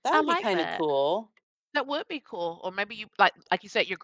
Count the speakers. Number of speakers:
2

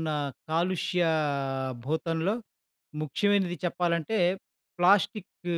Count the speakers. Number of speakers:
1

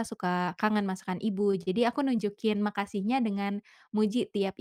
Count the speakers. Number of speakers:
1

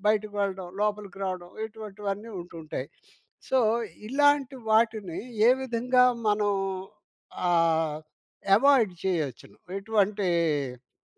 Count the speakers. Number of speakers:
1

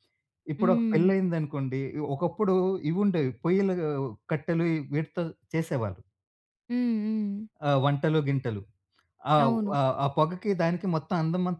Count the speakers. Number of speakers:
2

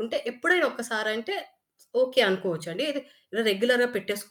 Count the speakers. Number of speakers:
1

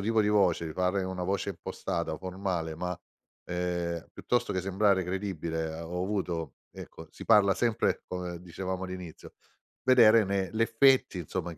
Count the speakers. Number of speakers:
1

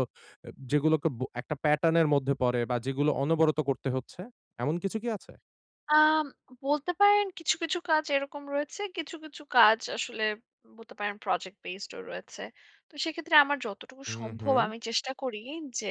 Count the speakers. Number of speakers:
2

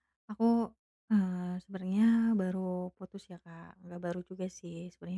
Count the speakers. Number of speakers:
1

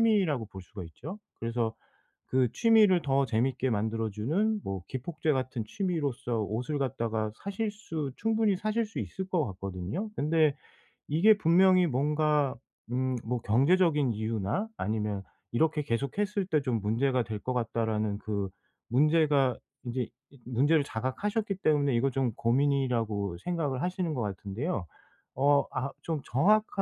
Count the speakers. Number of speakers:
1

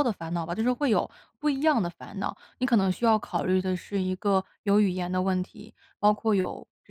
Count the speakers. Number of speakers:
1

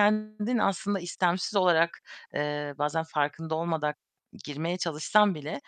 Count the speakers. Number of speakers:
1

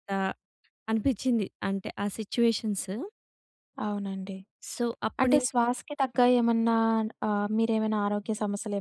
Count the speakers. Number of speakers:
2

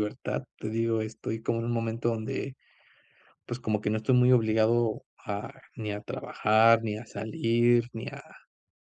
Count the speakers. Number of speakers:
1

